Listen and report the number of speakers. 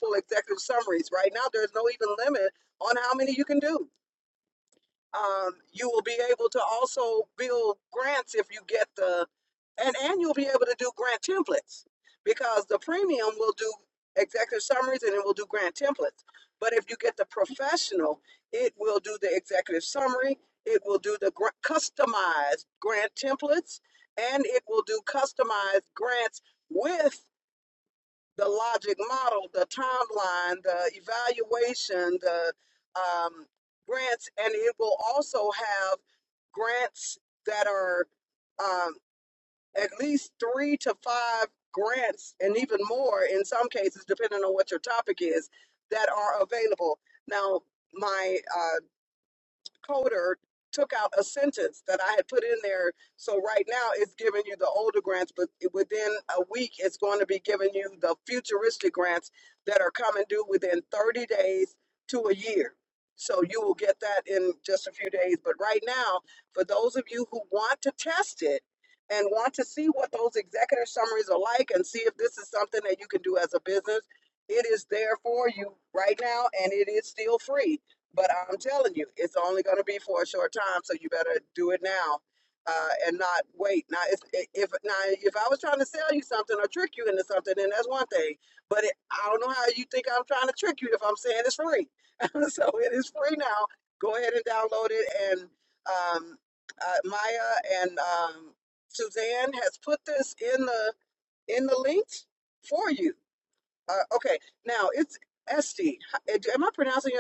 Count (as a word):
one